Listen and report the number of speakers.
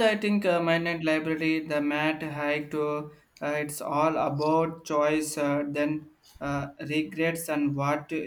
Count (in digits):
1